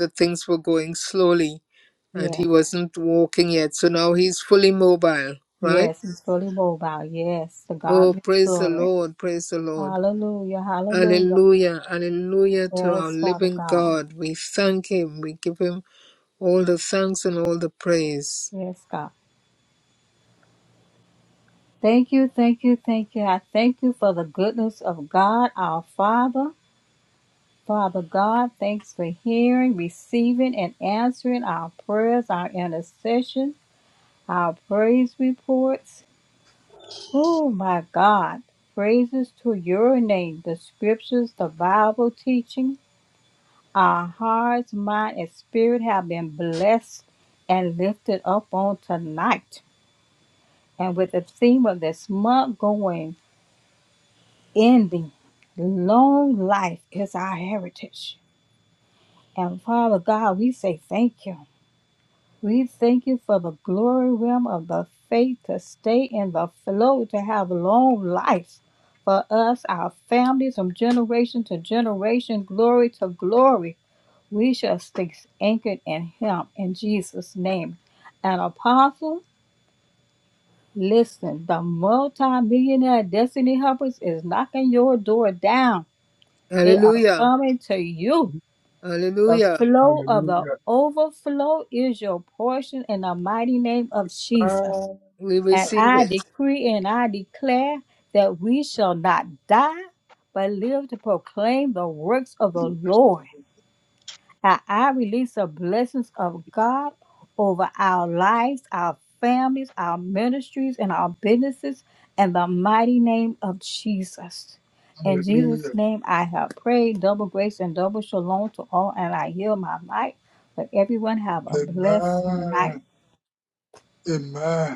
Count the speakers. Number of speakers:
3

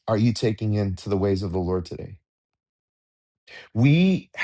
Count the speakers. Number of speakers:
1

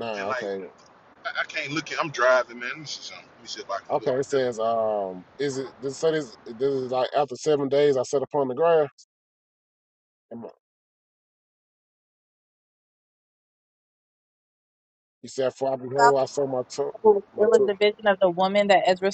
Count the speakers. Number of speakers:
3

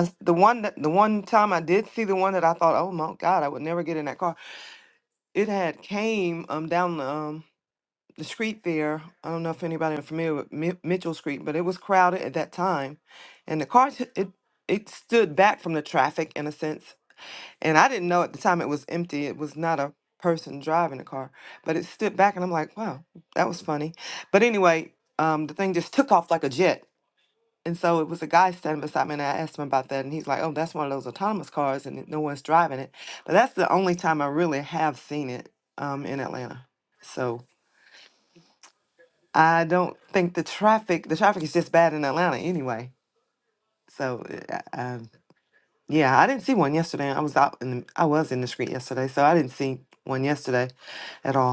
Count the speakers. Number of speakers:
1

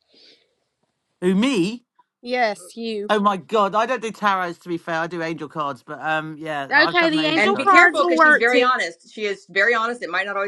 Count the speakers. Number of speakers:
3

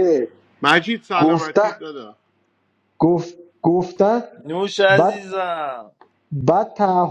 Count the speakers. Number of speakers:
3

